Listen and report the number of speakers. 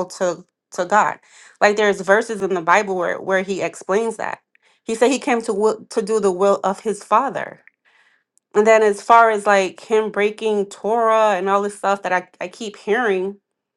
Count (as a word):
one